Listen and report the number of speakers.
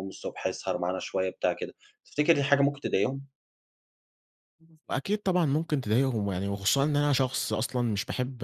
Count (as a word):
two